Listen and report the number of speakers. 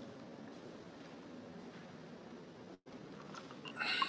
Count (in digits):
0